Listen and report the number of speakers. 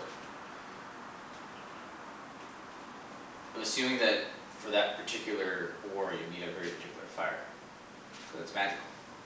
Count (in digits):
1